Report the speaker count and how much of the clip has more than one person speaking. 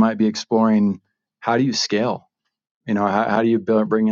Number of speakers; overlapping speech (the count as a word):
one, no overlap